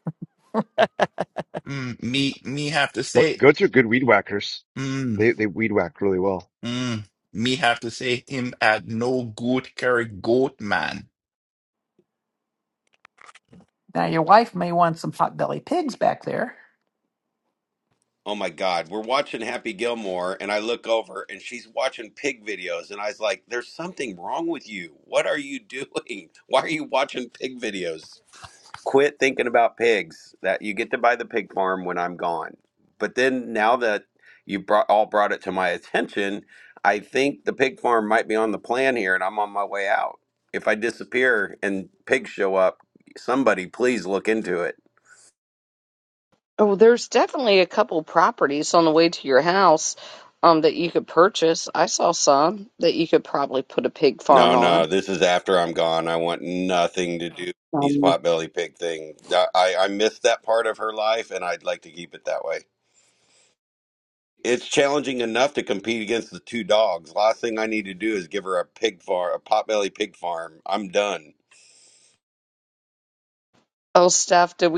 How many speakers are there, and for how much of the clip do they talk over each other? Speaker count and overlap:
5, about 2%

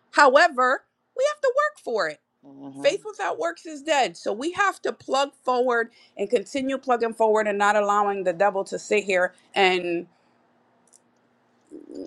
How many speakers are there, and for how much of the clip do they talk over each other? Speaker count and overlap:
1, no overlap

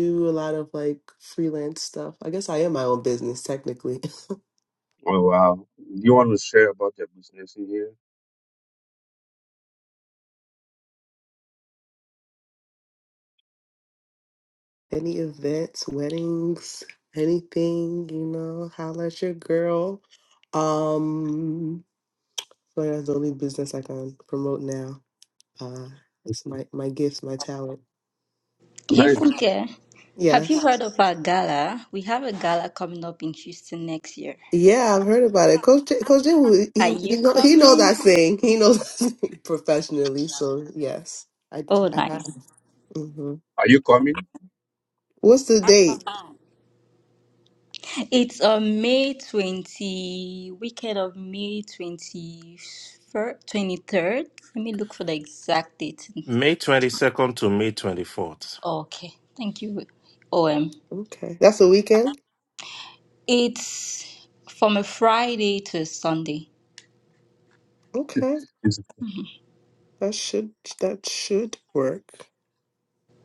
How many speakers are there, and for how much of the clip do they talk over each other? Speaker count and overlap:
4, about 3%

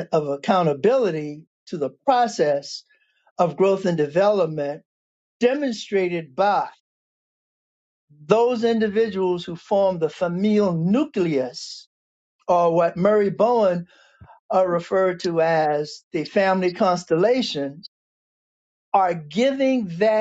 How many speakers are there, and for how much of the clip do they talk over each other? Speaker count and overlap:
1, no overlap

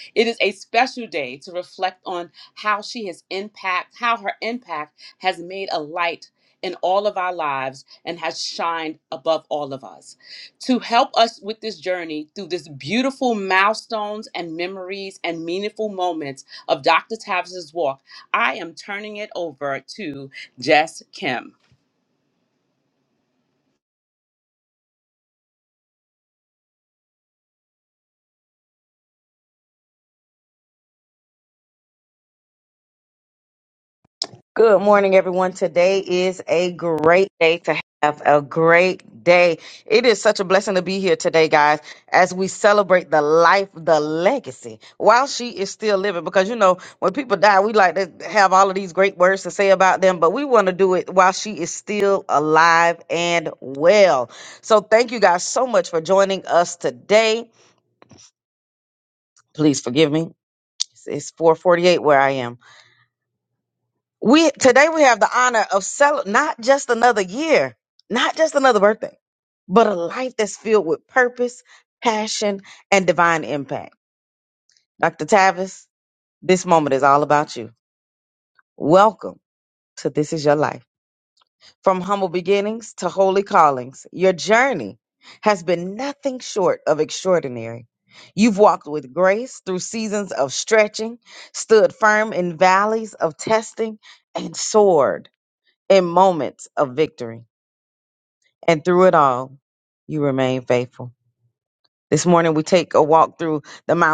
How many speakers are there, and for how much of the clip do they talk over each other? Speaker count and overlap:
2, no overlap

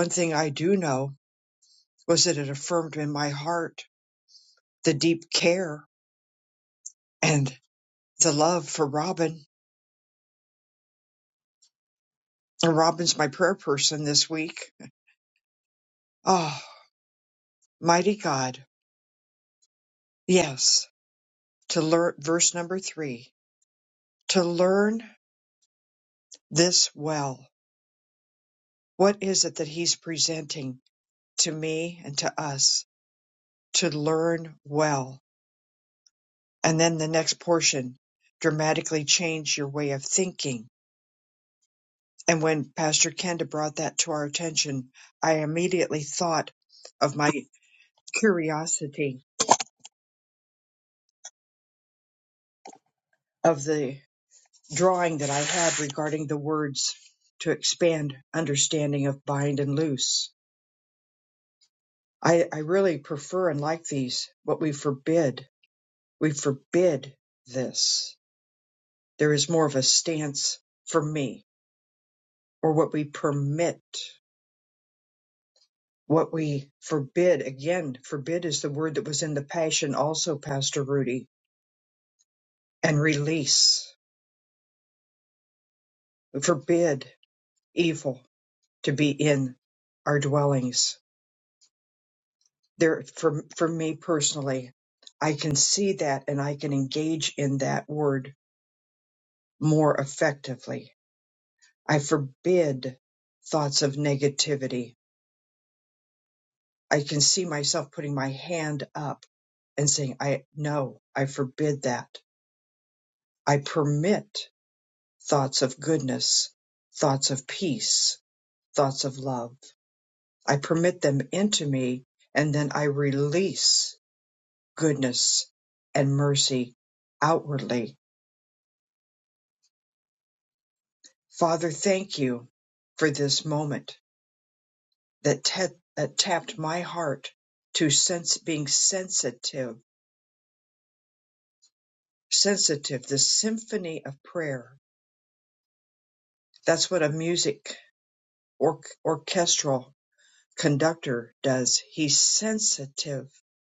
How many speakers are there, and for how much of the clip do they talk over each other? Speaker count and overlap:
1, no overlap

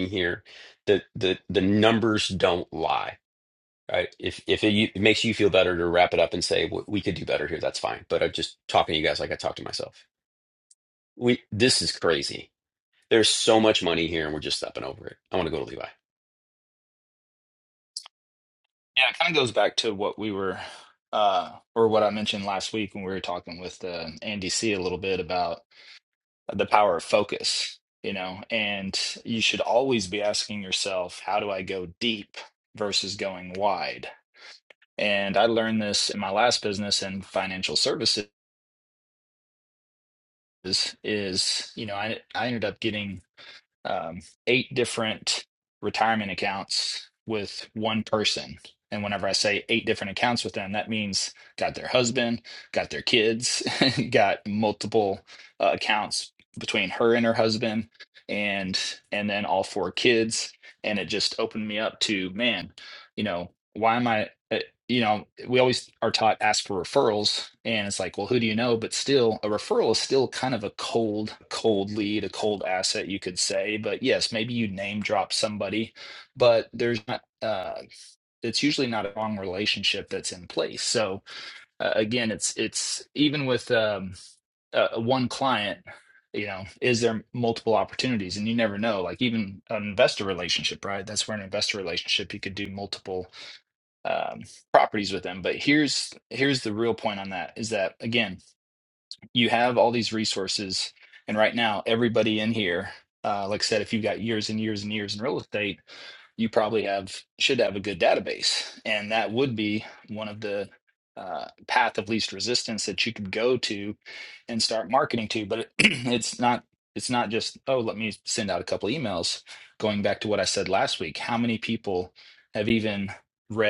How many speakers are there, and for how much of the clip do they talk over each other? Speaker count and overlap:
2, no overlap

